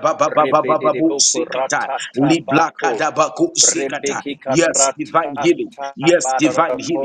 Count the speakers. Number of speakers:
two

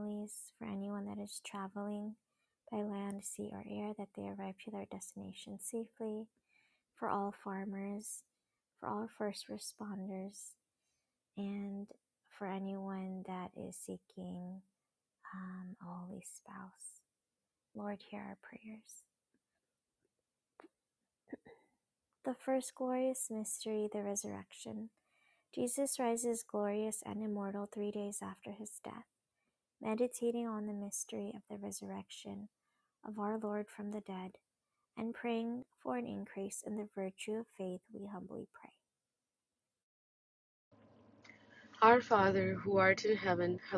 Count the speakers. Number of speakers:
two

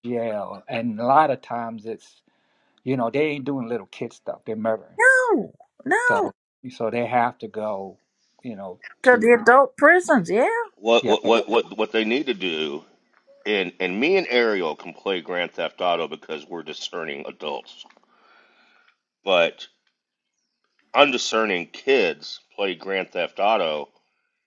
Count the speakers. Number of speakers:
three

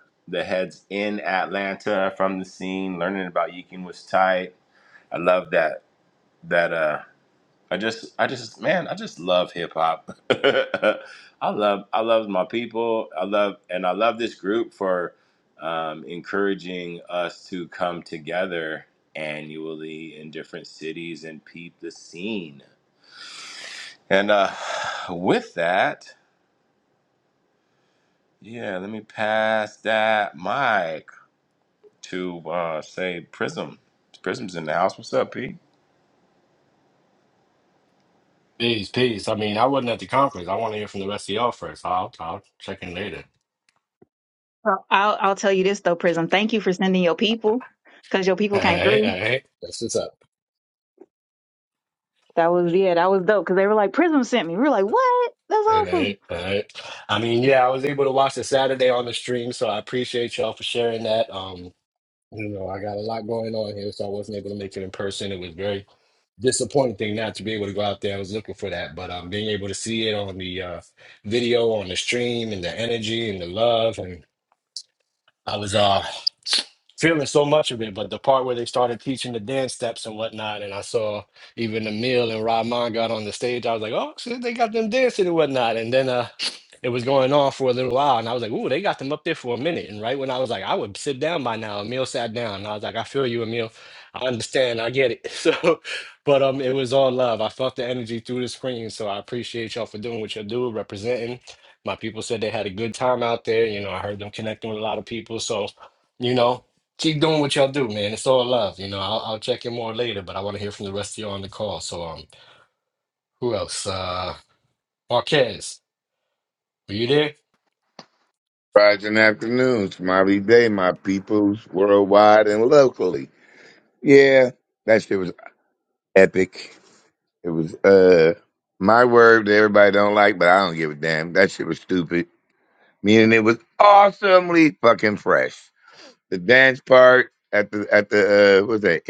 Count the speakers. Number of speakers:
four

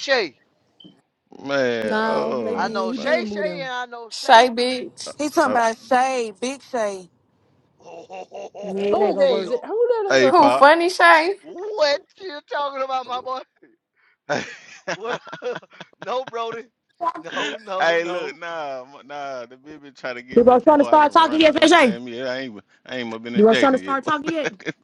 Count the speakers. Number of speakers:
six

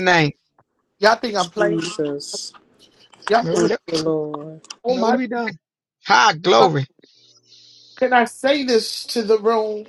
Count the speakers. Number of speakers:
three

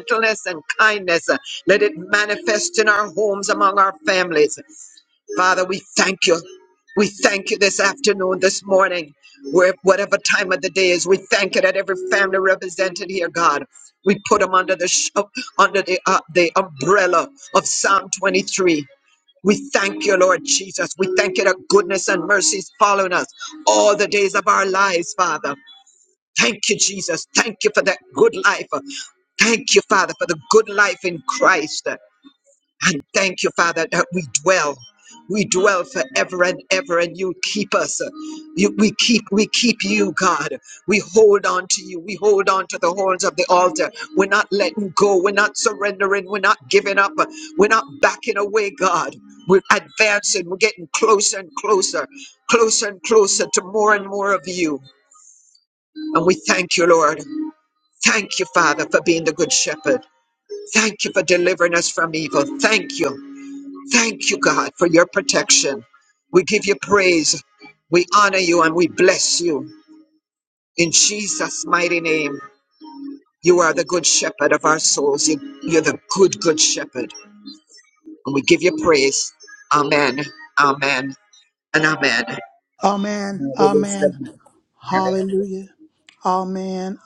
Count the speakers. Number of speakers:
two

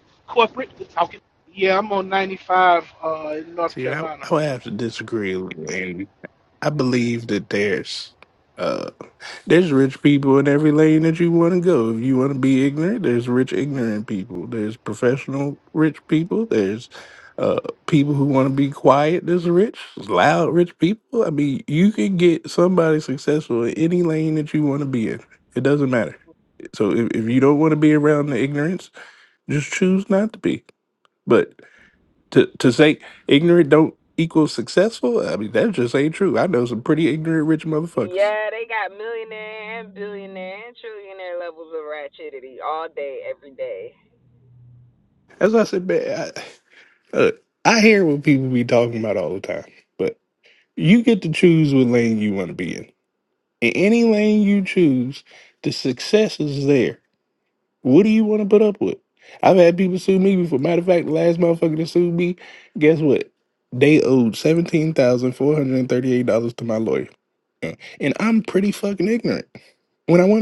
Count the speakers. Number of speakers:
three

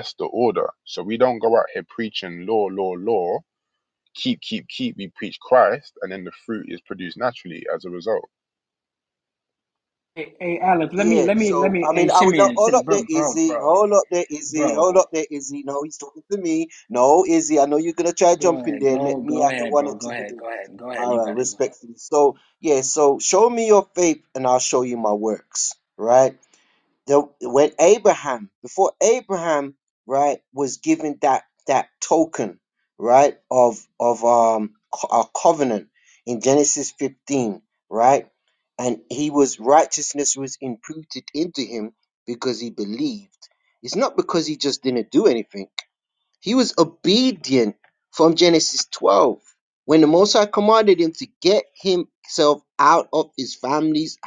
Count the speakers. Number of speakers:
three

